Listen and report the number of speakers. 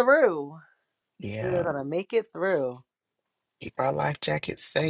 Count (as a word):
two